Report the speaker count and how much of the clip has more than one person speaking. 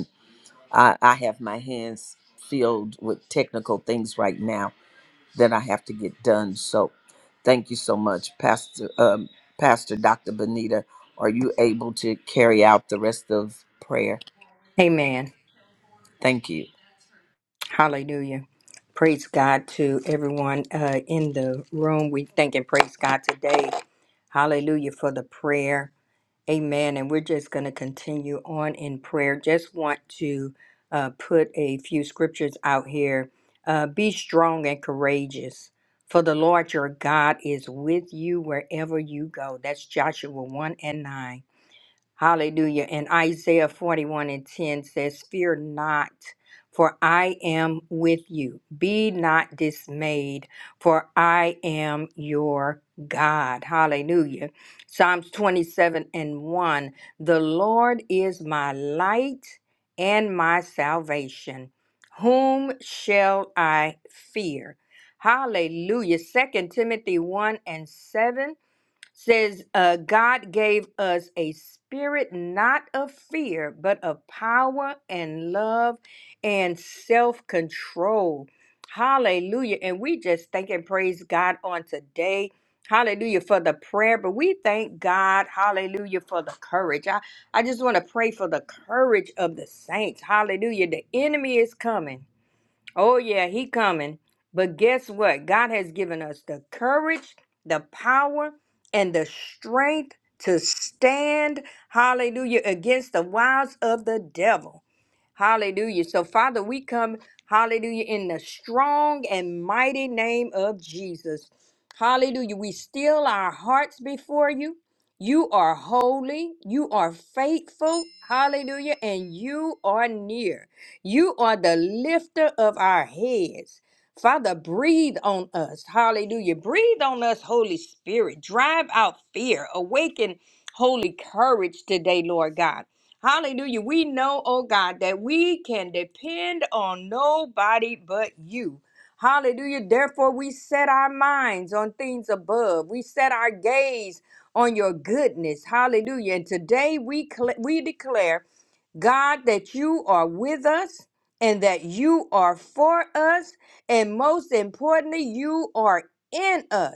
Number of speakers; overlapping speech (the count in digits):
2, no overlap